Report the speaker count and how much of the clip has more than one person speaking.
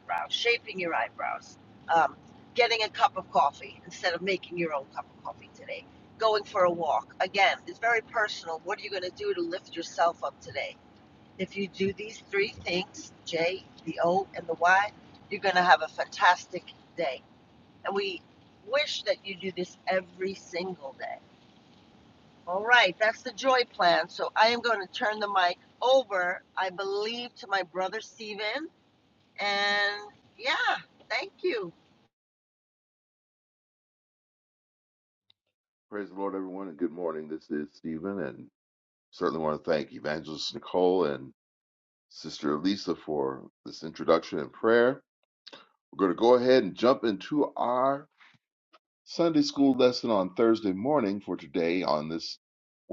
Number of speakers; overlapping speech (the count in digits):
2, no overlap